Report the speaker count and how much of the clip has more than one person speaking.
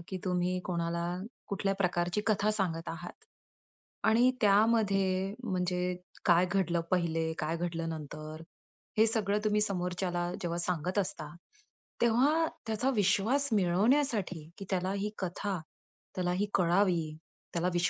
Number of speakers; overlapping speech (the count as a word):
one, no overlap